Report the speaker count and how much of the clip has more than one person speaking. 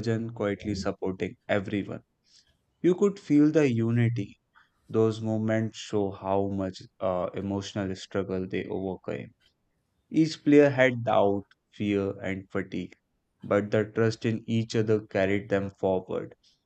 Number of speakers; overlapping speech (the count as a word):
one, no overlap